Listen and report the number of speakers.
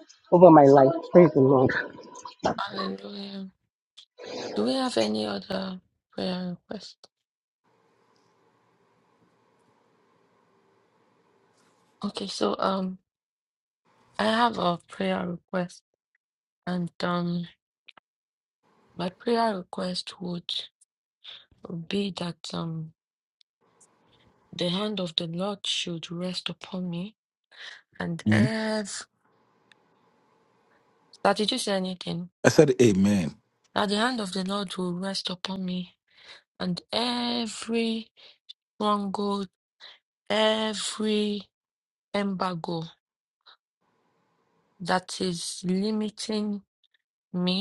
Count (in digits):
3